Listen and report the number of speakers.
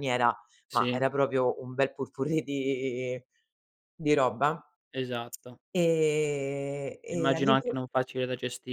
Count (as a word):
two